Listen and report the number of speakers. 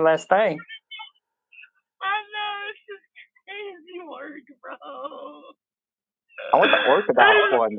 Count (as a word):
two